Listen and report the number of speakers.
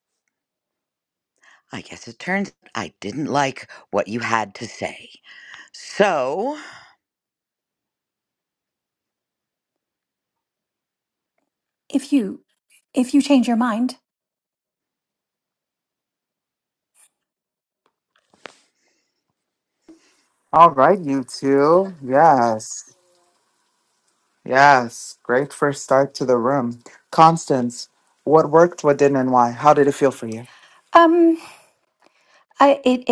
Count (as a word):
three